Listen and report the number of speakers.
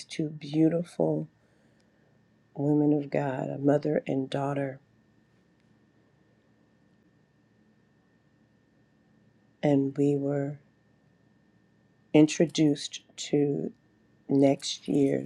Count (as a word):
one